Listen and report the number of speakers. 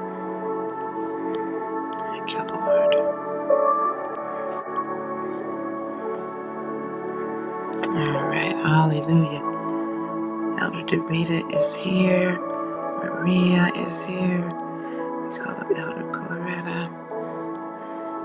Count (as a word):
one